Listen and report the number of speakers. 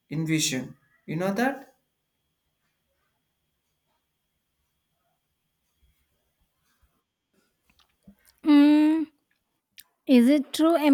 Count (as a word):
two